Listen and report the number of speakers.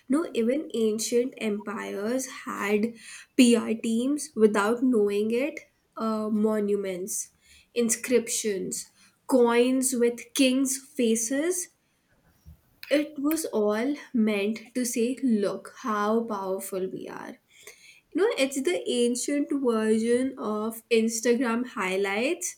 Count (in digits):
1